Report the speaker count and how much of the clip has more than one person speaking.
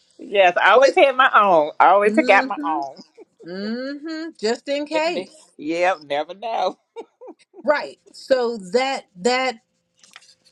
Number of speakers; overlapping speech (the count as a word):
two, about 13%